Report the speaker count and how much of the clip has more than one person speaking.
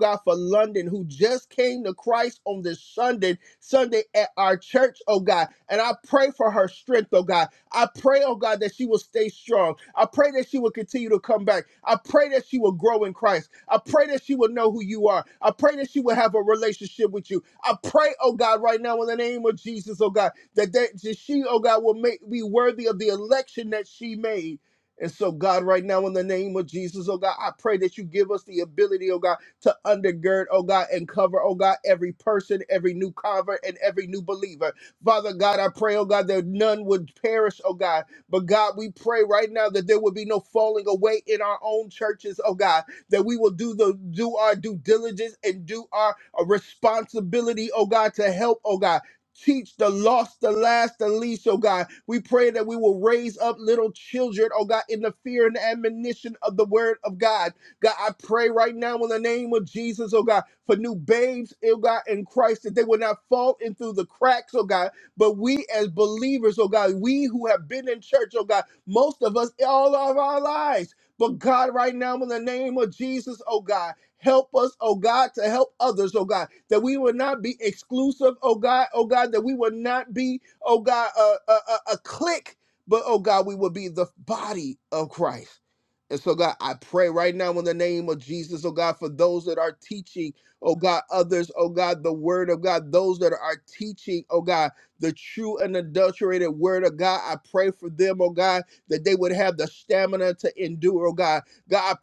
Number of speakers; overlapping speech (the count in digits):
1, no overlap